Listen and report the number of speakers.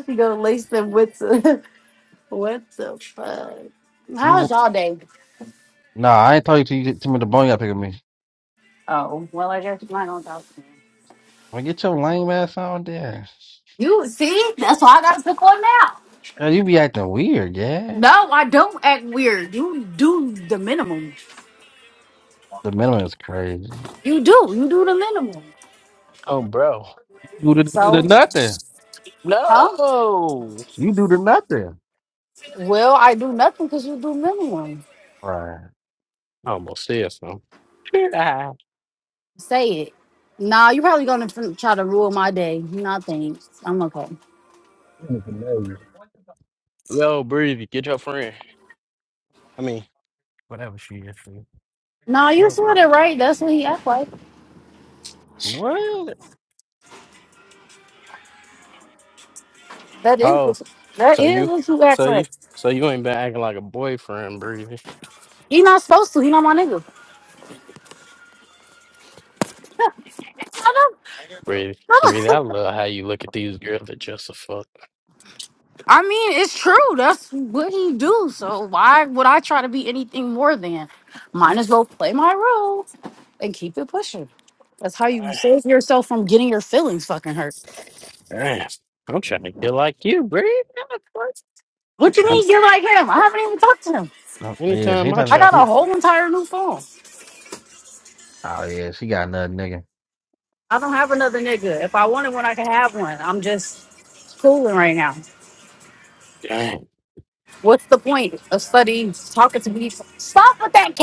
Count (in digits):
3